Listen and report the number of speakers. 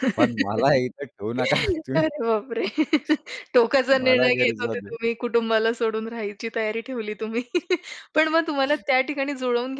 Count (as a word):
two